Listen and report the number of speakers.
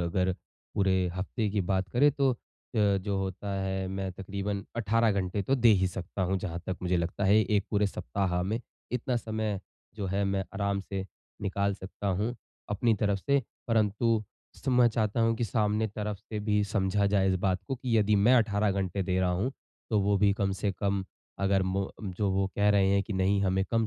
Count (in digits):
1